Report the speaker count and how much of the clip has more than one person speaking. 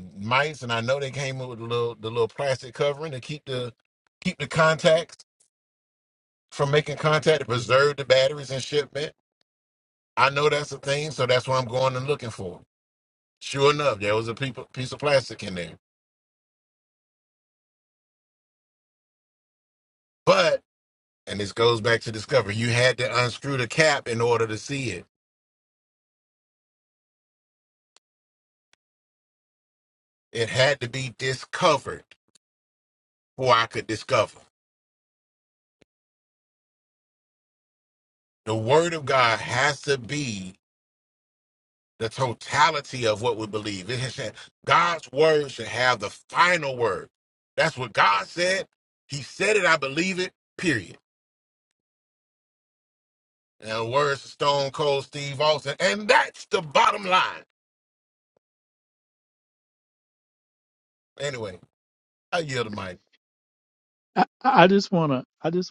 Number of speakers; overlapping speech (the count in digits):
2, no overlap